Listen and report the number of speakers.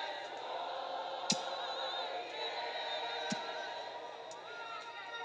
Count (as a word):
zero